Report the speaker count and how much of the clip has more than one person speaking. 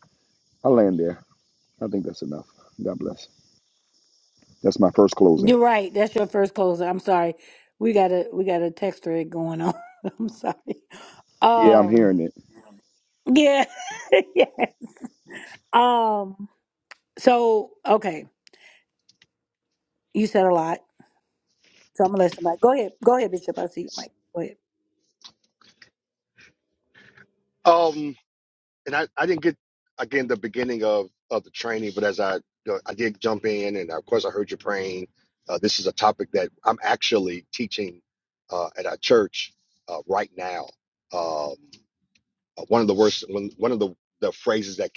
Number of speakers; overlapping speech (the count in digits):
3, about 1%